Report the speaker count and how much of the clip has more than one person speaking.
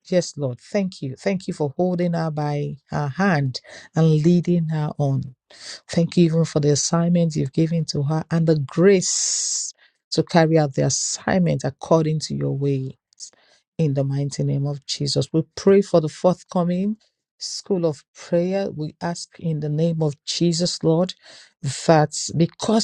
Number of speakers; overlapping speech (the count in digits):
1, no overlap